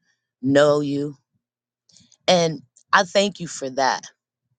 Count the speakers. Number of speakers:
1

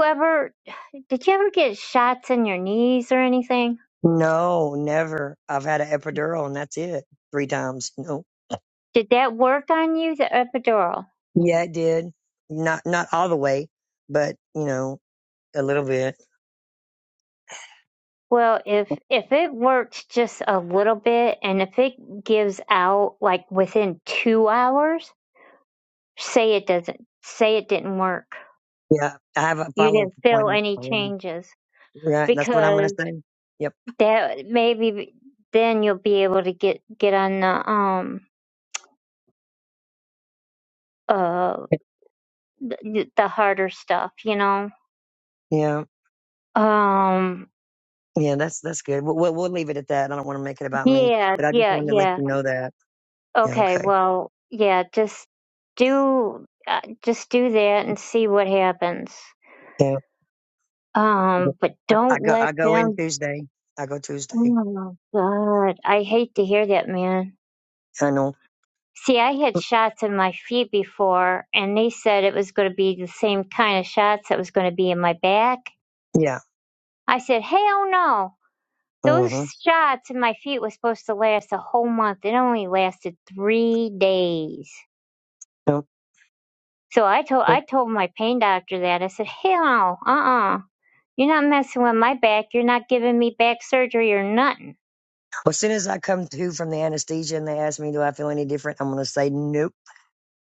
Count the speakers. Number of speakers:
2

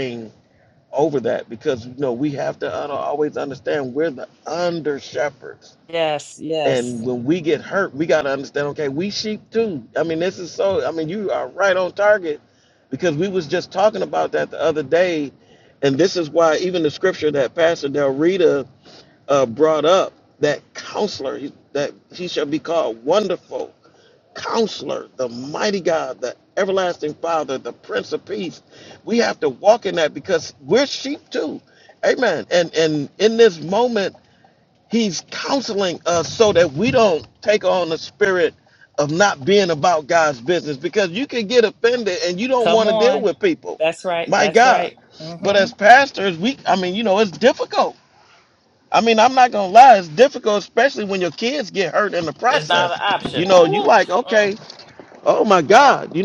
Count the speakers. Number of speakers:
2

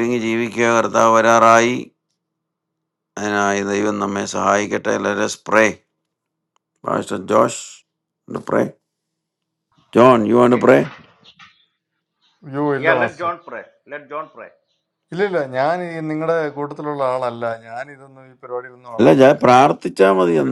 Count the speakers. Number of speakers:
3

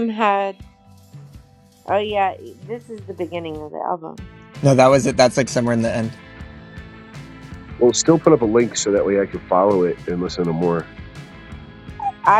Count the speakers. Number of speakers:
3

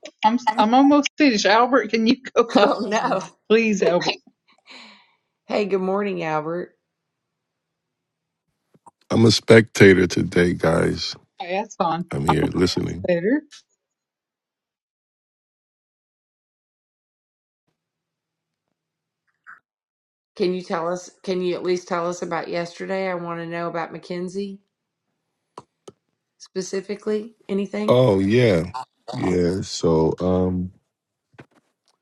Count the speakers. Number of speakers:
3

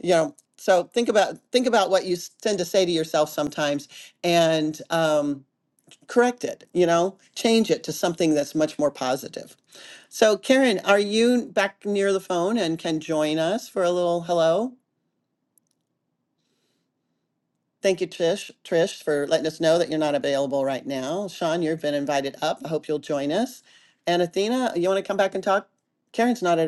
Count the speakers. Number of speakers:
1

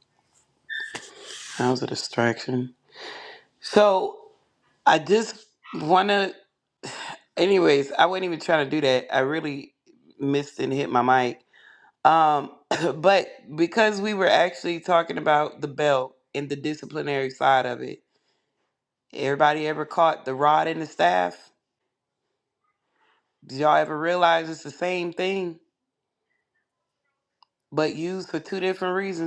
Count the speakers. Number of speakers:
1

